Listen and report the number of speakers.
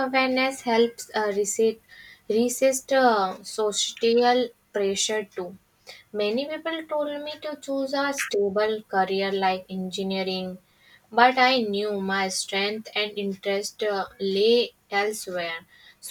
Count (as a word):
one